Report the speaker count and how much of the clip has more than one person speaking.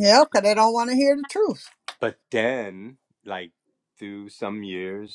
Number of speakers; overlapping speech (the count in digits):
2, no overlap